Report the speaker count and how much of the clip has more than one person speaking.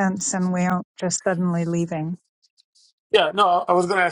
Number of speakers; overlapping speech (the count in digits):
2, no overlap